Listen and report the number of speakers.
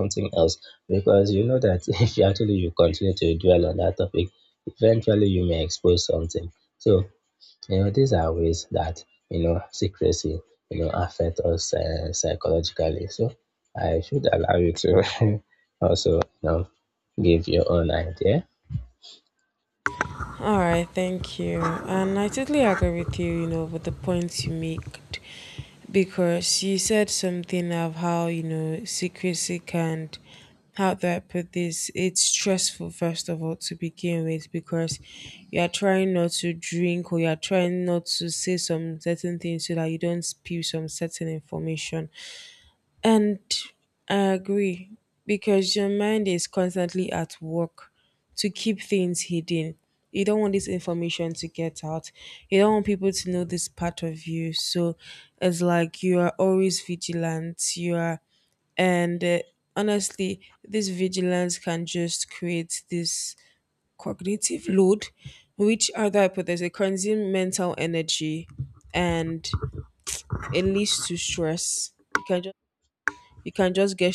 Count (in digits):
2